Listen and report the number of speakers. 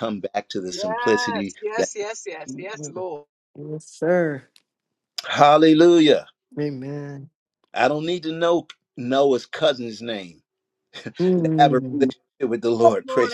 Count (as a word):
three